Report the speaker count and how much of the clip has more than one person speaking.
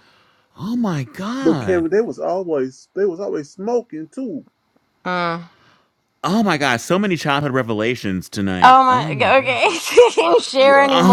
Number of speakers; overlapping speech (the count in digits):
3, about 17%